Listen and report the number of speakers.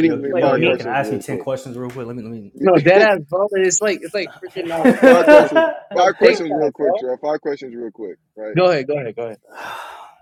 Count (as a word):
three